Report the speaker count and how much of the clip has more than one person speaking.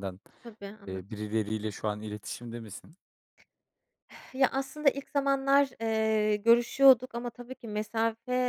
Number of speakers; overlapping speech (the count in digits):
2, about 2%